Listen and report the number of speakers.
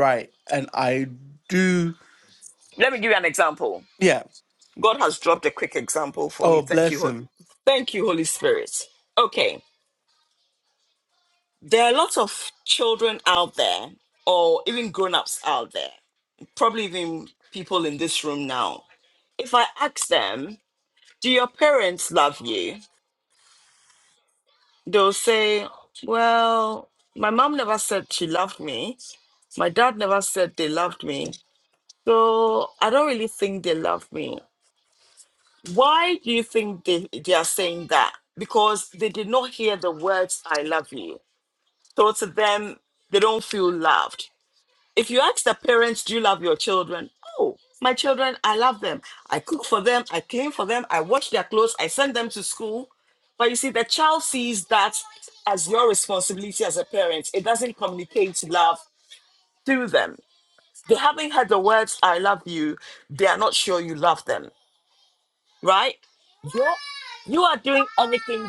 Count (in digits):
2